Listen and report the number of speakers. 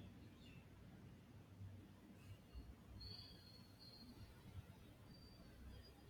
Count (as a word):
zero